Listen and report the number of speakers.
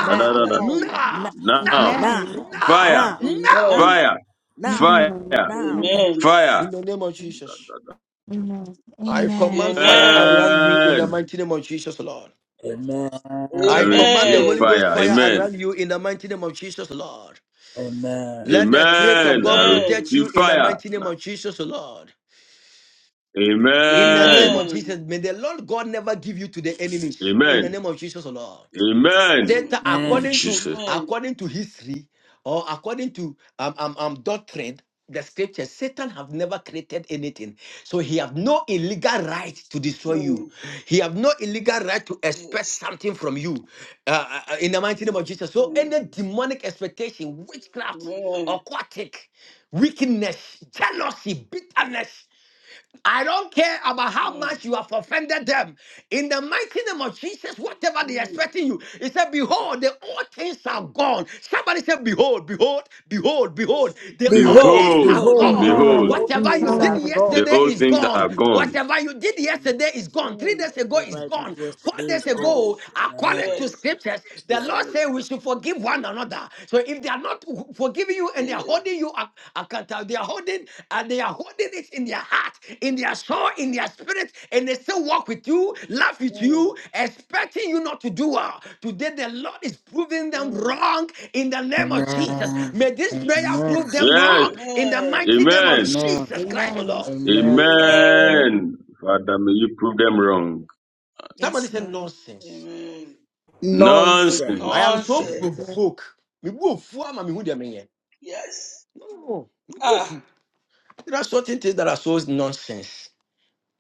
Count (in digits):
5